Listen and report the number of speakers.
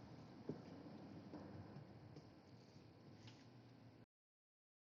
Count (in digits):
0